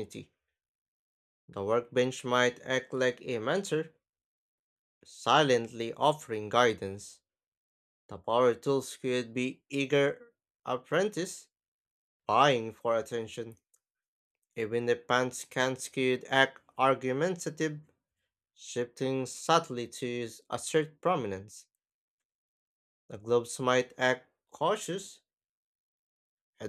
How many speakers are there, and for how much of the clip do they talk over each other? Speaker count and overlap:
1, no overlap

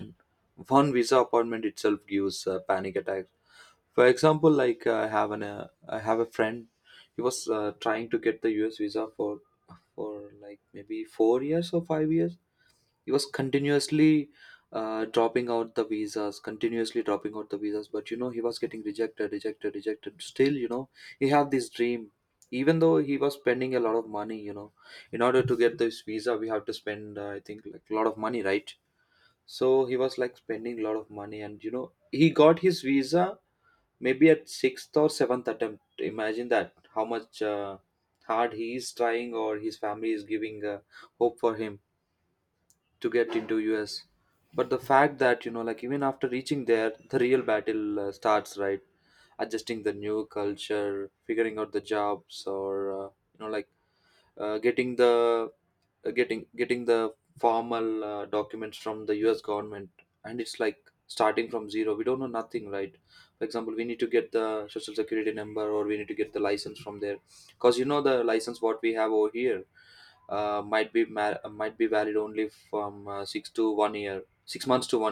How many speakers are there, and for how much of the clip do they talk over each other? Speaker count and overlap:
1, no overlap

